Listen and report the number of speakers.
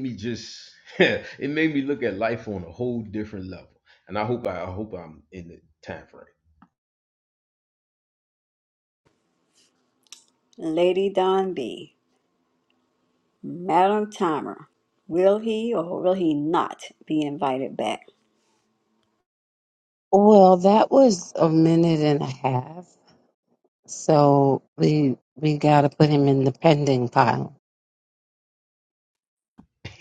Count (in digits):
3